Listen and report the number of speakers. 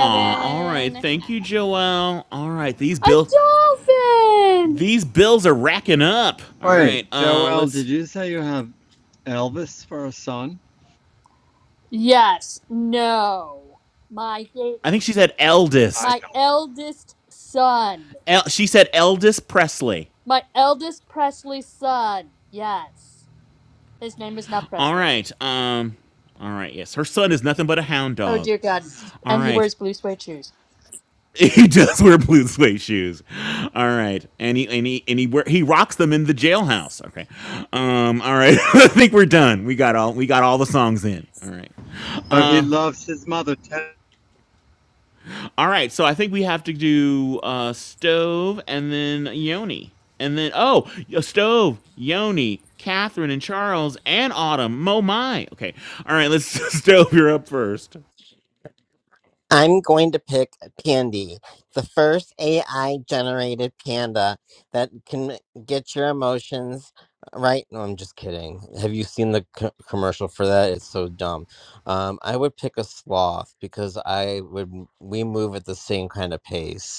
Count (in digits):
4